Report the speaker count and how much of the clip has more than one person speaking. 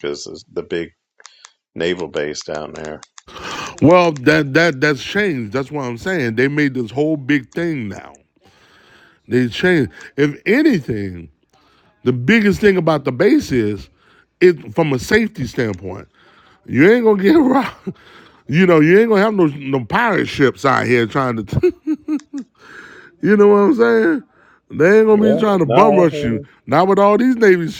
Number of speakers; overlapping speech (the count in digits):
2, about 5%